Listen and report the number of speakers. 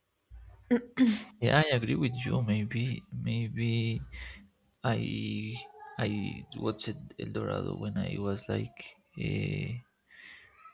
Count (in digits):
1